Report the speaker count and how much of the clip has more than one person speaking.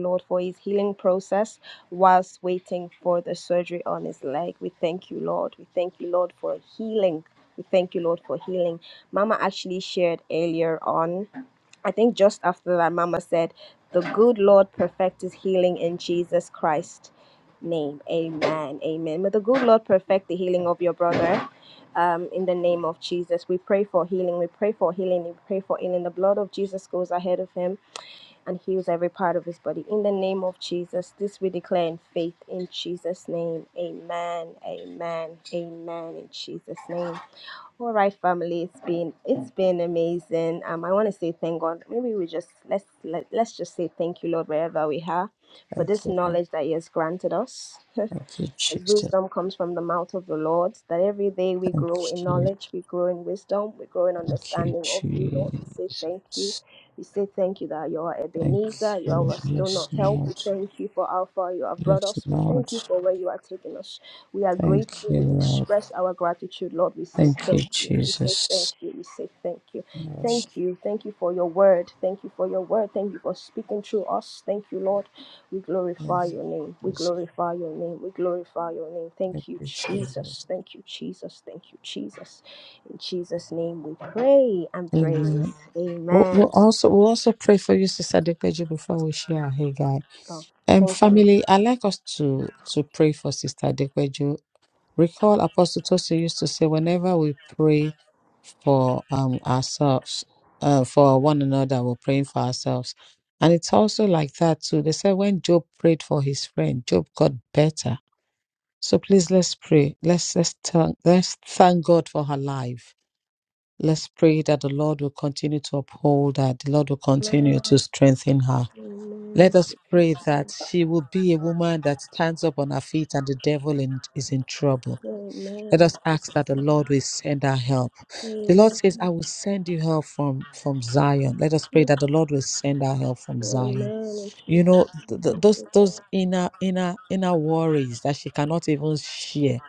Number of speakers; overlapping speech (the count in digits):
2, about 11%